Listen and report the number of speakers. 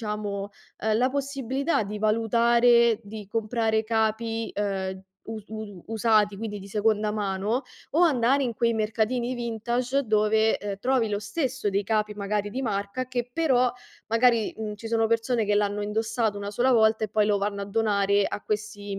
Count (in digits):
1